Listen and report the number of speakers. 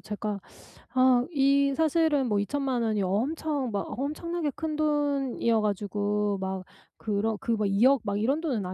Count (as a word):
one